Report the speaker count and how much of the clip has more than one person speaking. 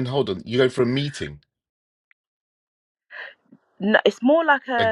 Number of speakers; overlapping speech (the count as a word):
two, about 4%